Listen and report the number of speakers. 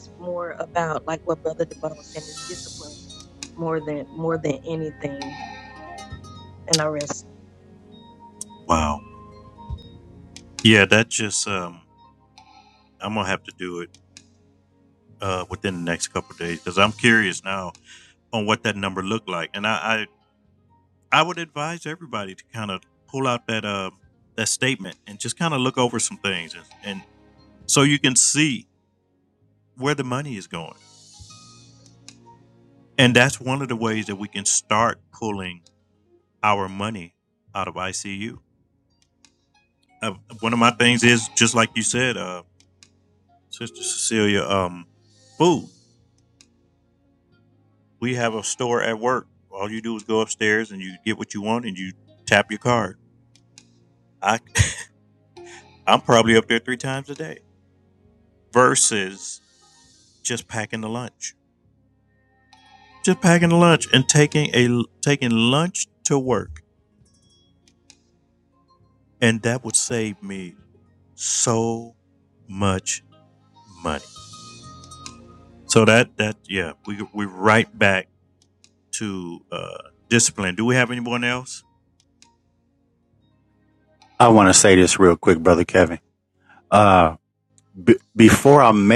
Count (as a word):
three